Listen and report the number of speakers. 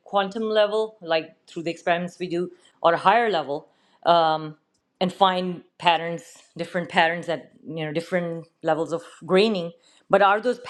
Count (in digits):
1